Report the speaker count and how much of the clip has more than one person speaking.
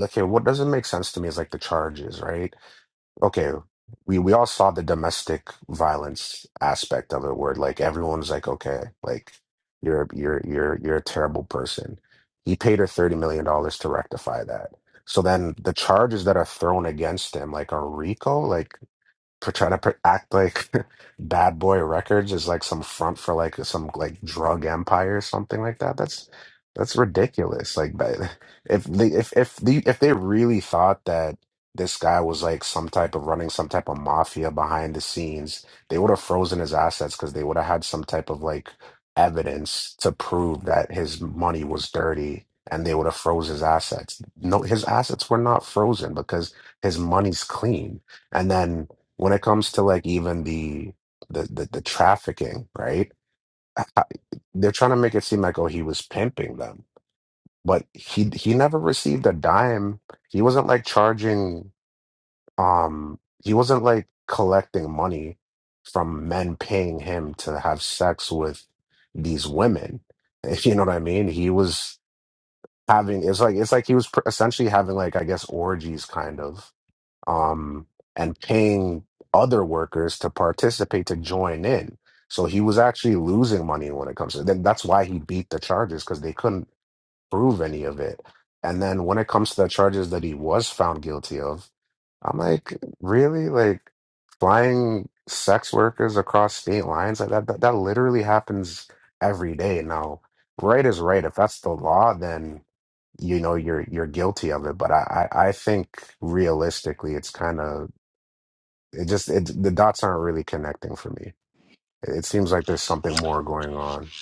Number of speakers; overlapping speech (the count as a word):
one, no overlap